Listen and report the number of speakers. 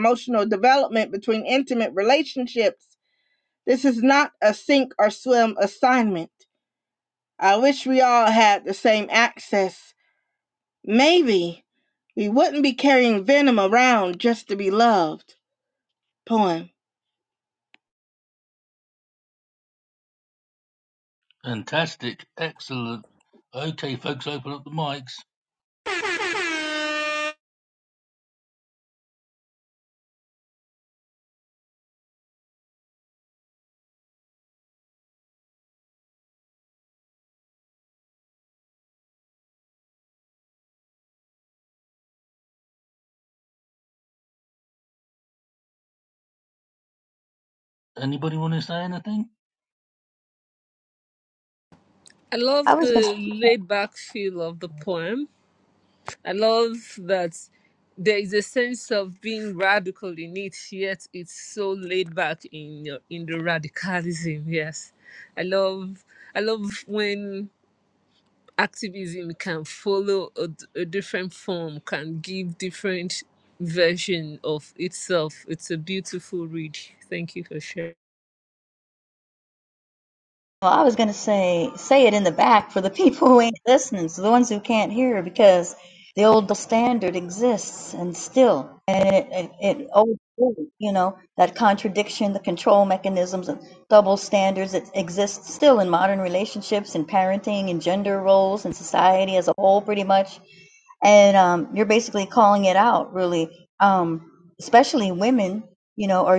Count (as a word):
four